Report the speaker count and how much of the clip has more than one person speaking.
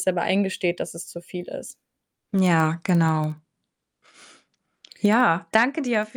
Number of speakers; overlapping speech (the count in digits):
2, no overlap